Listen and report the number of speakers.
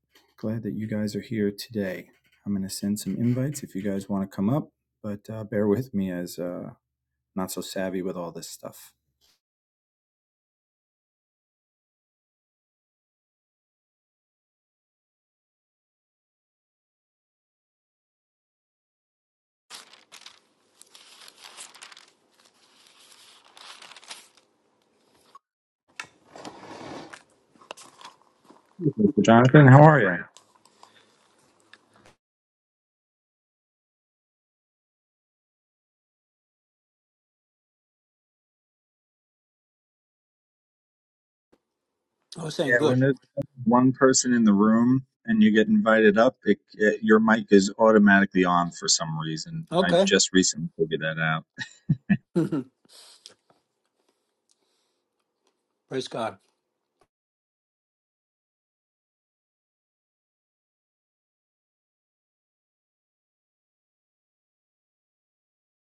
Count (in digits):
2